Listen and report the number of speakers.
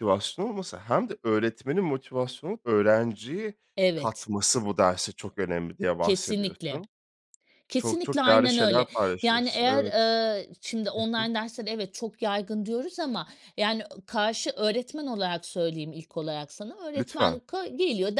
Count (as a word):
two